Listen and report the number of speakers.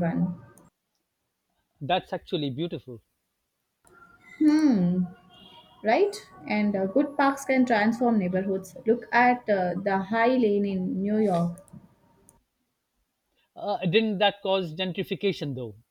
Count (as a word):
two